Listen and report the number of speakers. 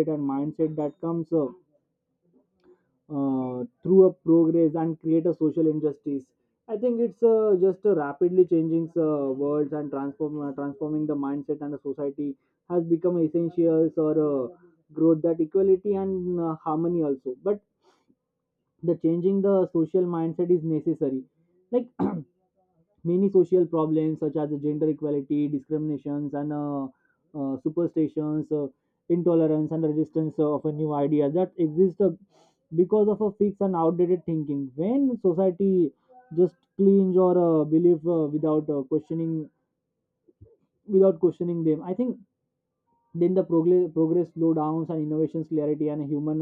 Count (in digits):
1